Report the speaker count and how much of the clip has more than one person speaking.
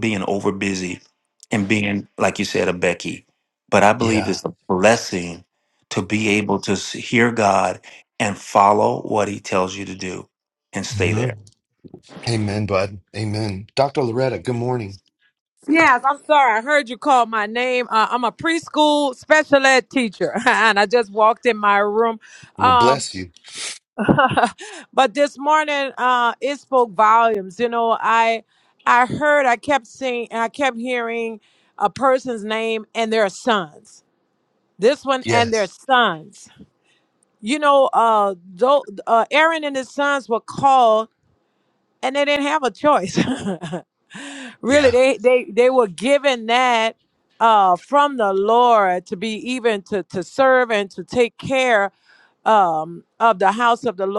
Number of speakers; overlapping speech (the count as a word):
three, about 3%